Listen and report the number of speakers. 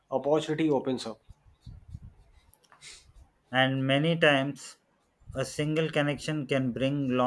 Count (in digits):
2